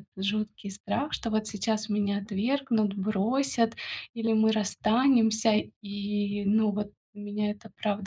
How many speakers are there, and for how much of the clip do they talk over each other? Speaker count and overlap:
one, no overlap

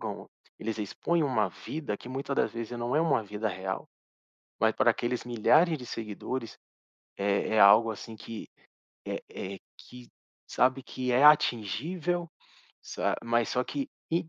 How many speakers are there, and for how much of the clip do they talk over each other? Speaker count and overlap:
one, no overlap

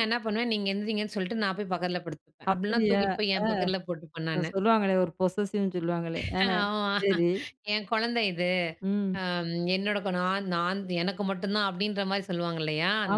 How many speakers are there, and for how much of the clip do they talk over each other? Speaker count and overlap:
two, about 6%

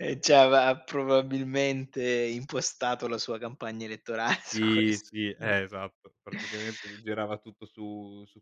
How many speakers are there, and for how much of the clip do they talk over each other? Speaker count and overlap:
two, about 7%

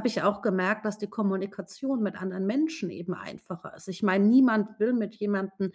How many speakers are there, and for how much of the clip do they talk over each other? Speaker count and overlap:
one, no overlap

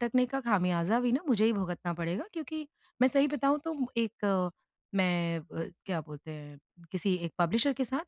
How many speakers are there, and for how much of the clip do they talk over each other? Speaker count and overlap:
one, no overlap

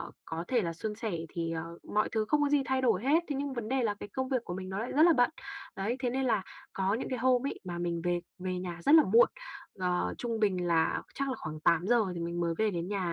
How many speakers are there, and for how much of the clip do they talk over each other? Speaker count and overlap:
one, no overlap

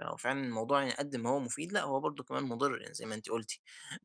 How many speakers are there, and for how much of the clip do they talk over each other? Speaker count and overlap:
one, no overlap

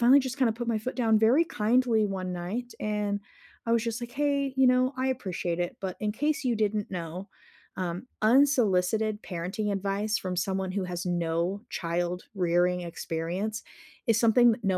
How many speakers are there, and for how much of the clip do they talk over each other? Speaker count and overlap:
one, no overlap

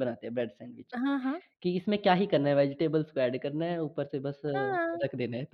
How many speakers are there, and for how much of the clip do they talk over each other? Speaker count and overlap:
two, about 1%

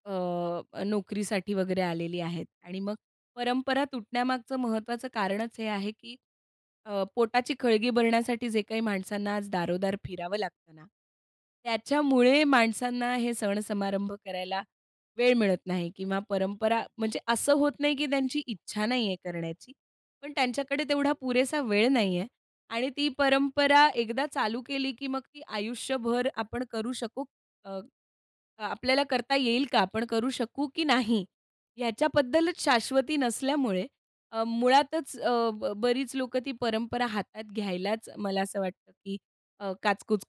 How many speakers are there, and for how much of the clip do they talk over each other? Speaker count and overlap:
one, no overlap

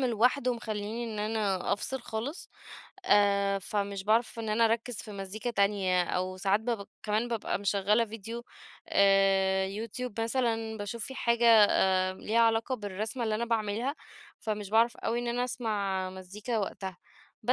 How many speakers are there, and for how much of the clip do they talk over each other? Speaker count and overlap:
one, no overlap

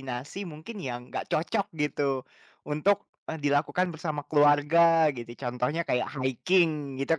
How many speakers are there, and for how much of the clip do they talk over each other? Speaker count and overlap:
one, no overlap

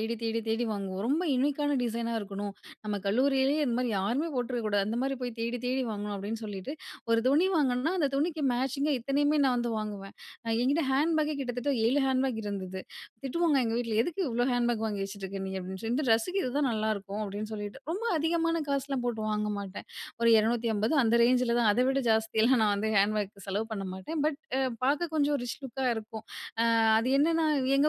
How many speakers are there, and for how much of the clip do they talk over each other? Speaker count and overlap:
one, no overlap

